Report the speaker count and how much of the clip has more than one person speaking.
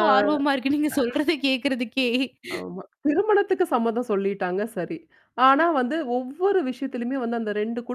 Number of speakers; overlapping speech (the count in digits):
2, no overlap